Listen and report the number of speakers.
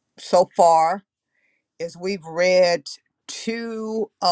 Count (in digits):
1